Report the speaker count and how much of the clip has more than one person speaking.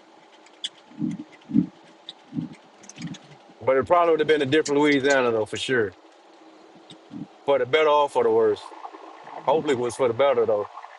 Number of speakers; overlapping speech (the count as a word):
one, no overlap